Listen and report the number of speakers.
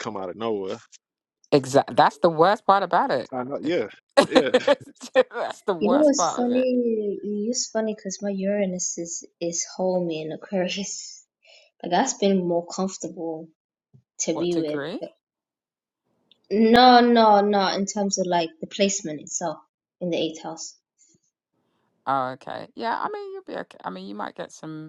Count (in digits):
3